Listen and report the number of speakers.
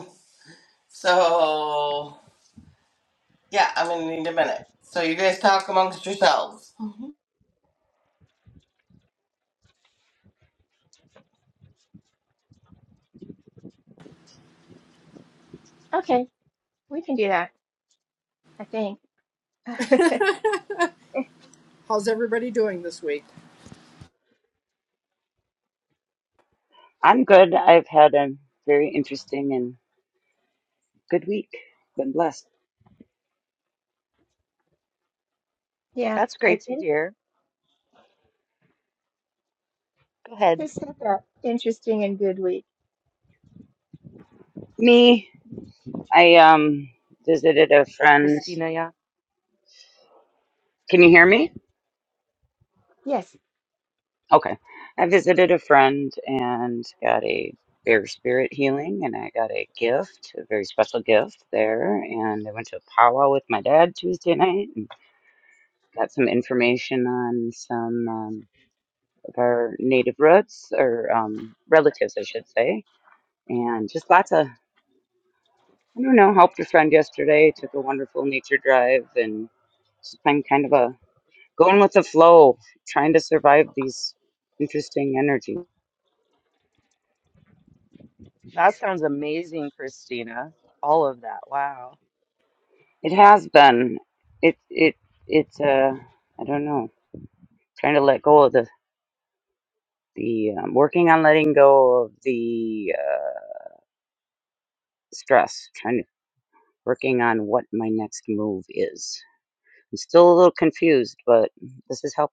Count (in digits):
5